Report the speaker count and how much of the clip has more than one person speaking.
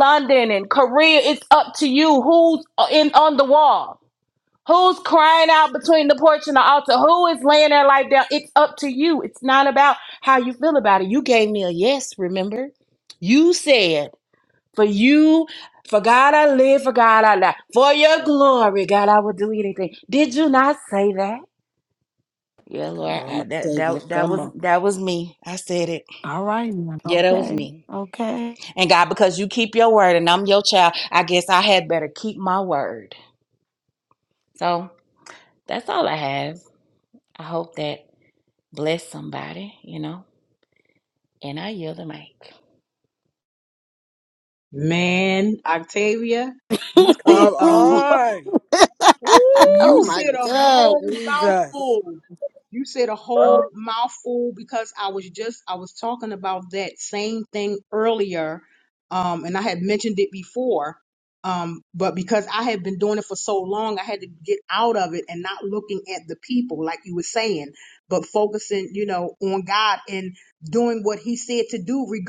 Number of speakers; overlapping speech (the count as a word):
four, about 7%